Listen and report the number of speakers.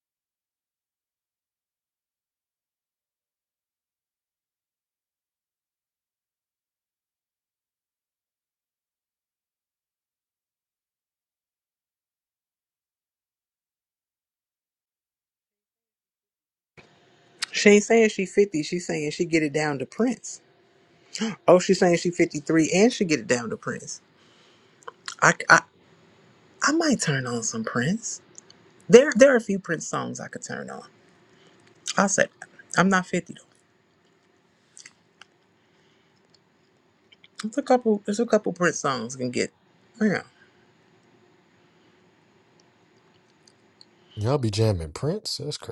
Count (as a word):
two